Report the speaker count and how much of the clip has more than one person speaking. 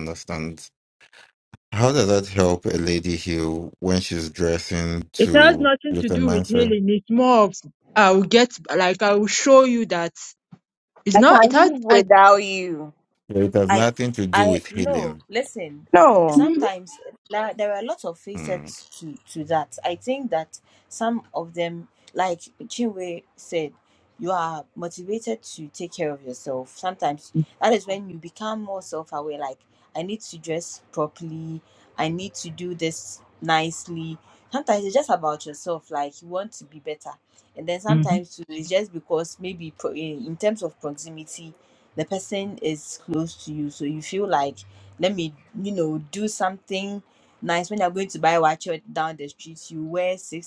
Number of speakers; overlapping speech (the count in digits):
4, about 8%